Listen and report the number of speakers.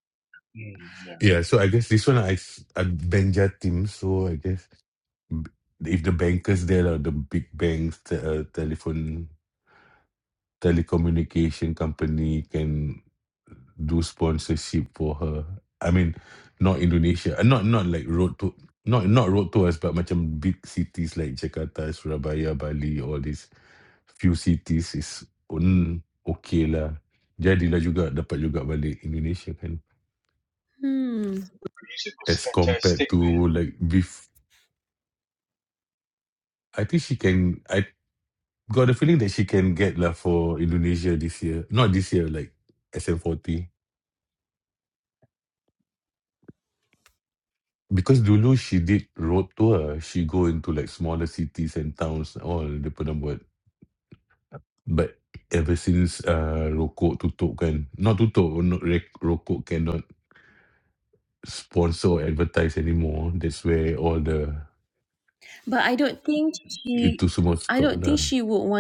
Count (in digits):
3